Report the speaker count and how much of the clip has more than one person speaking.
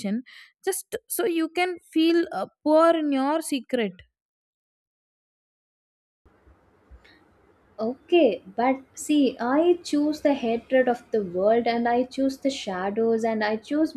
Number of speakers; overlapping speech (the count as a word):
two, no overlap